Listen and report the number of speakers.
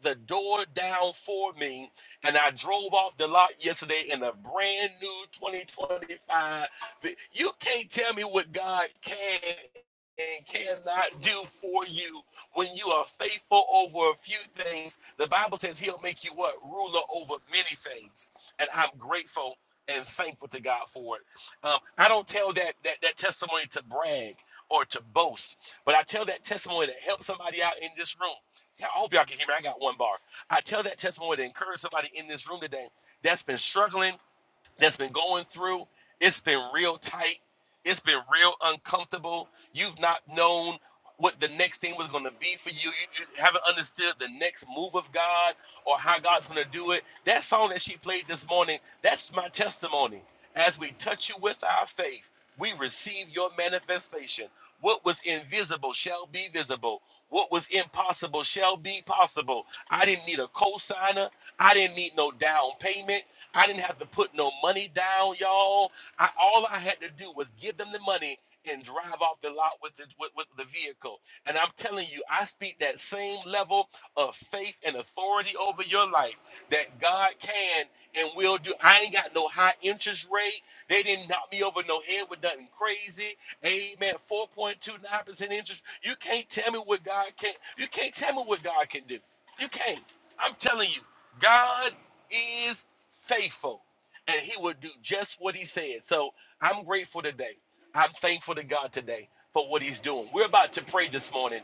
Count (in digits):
1